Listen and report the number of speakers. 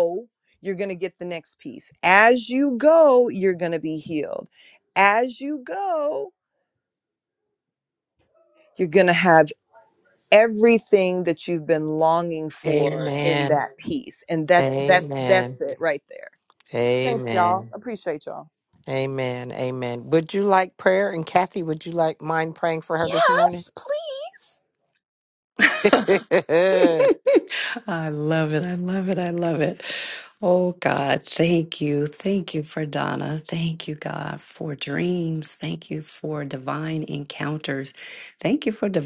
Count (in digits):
3